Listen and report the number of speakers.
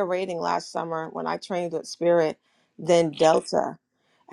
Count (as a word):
one